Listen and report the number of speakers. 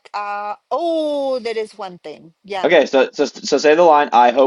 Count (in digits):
2